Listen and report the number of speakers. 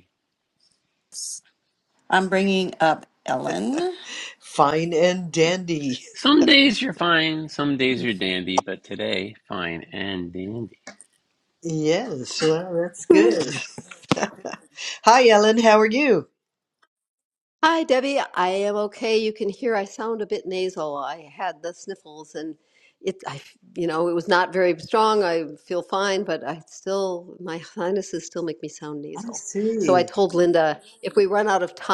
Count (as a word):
four